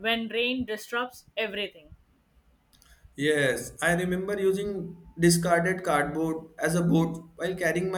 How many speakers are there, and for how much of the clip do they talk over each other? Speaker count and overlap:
2, no overlap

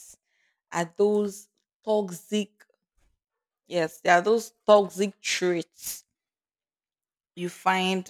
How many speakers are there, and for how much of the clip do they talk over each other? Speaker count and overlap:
1, no overlap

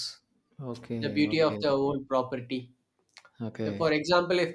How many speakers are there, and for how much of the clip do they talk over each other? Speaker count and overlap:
2, about 18%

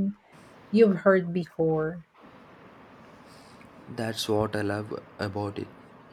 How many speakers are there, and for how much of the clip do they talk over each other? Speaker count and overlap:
2, no overlap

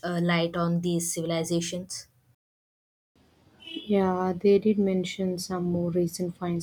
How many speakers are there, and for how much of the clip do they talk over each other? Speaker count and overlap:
2, no overlap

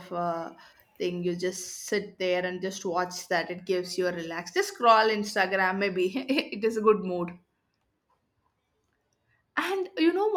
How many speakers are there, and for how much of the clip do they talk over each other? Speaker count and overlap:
1, no overlap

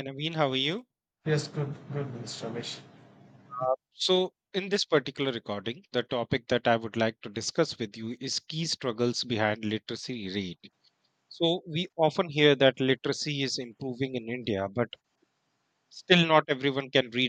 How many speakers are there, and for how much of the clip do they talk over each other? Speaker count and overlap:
2, no overlap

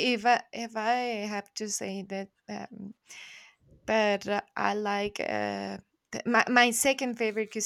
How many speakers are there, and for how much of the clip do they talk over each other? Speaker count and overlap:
1, no overlap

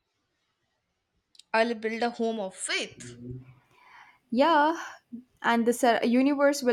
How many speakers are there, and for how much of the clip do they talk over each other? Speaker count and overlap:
2, no overlap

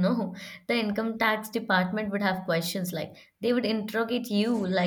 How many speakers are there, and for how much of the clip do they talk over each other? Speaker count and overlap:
1, no overlap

